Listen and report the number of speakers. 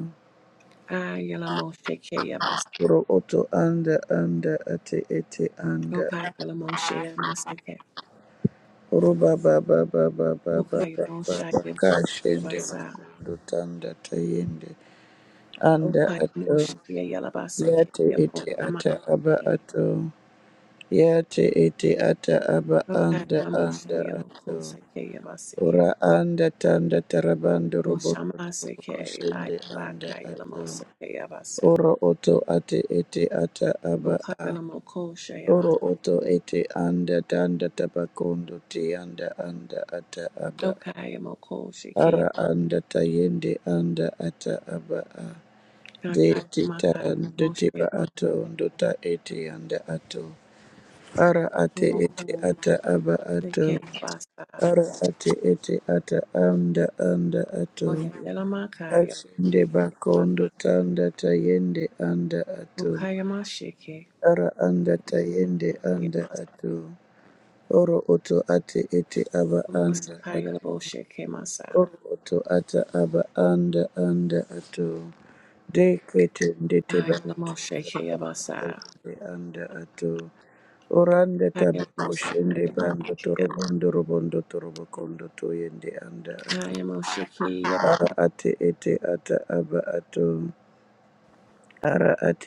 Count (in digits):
2